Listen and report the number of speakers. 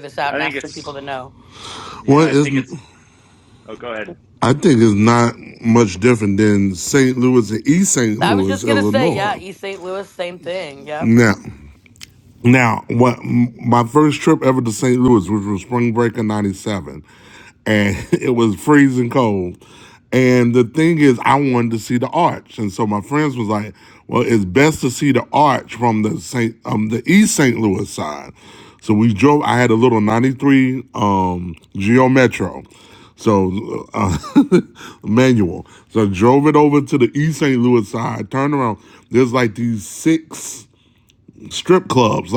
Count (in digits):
3